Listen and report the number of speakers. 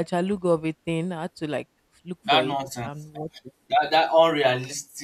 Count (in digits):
2